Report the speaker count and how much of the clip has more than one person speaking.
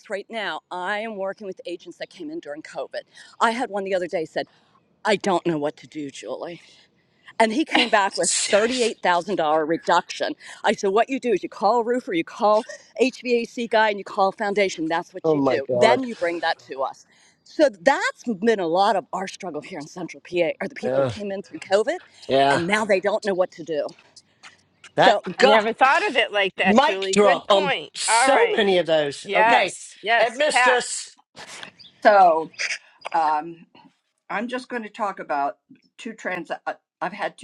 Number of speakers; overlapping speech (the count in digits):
4, about 14%